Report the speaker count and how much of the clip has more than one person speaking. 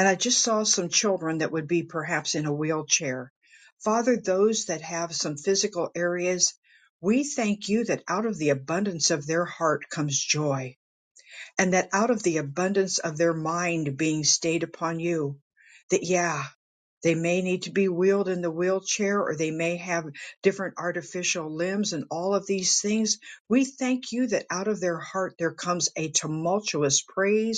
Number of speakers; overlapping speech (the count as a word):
one, no overlap